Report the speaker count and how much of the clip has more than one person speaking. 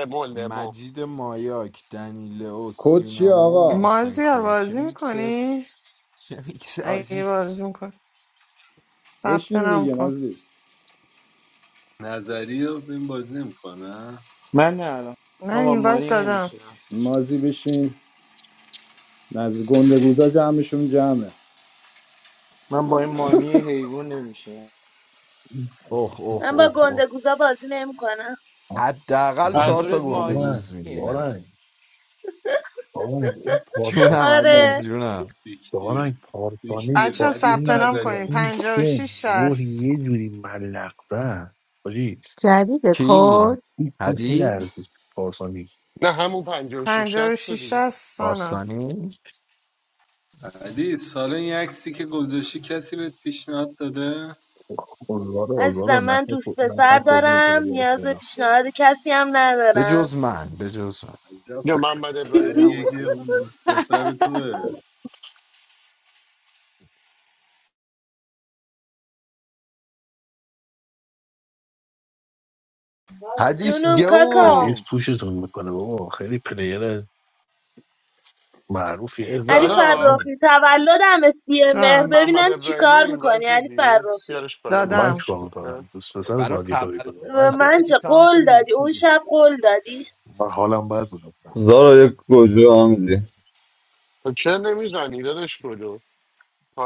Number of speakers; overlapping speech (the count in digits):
10, about 26%